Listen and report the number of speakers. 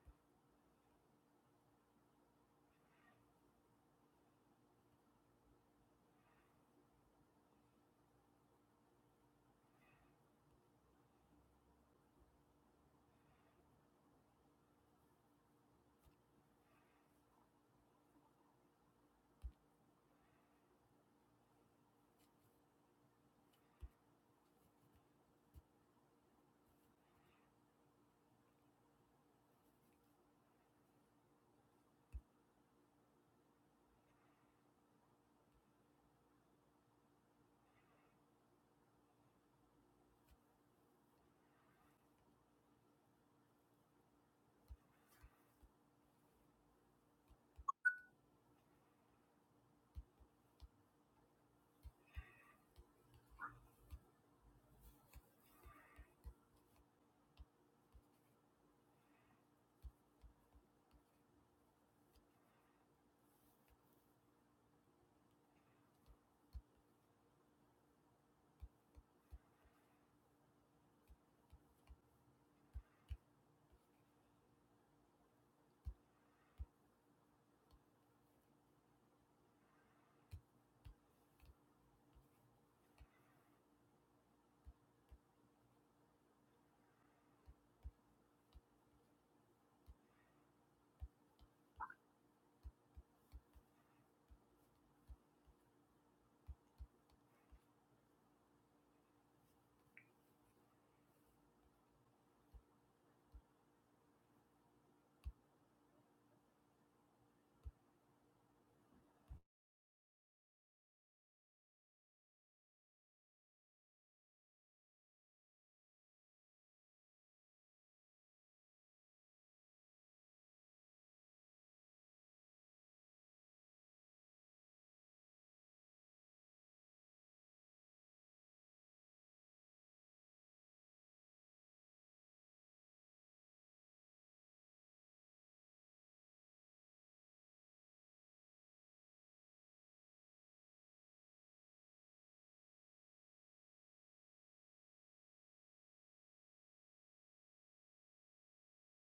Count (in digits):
0